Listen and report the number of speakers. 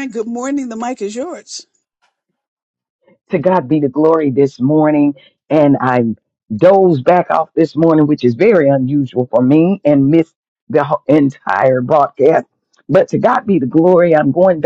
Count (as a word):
two